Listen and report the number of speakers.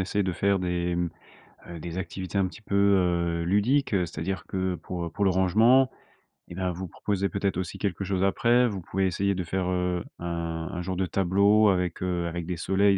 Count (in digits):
1